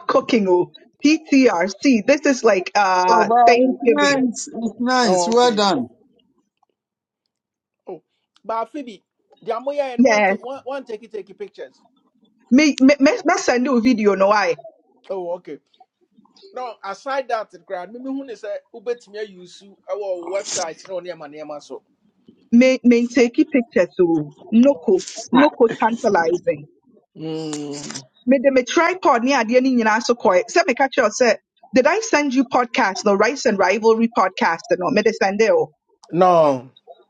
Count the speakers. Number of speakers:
three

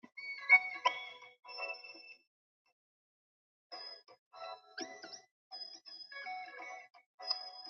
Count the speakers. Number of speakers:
zero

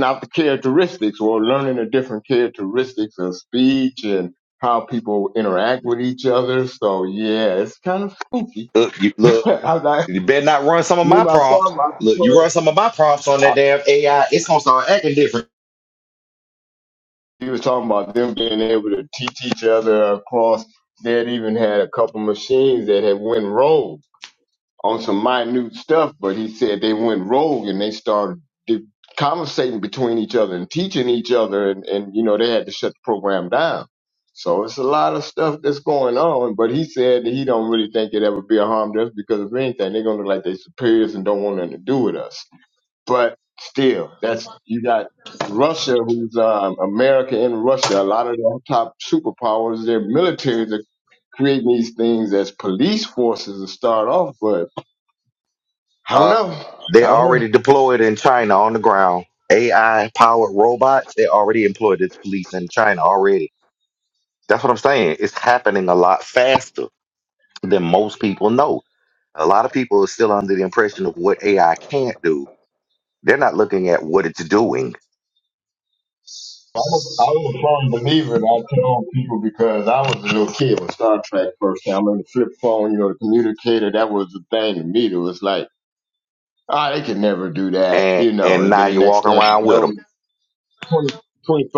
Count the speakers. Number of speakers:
two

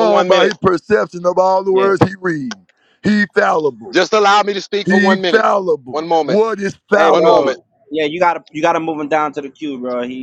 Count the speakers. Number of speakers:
three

